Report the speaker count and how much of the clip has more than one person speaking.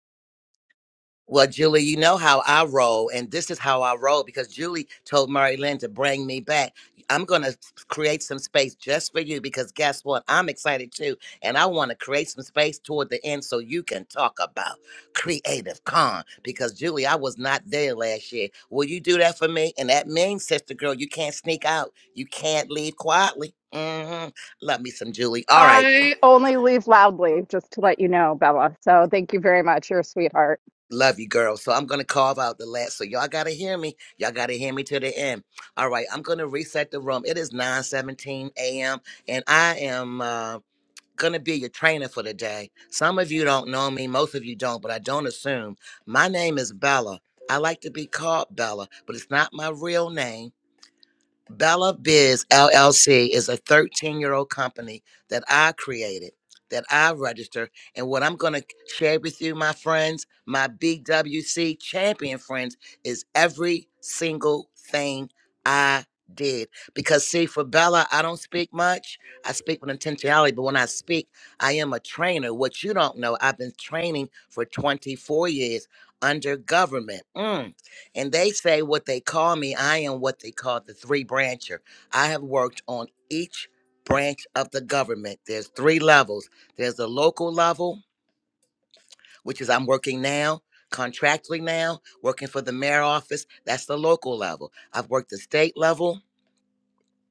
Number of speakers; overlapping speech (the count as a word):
two, under 1%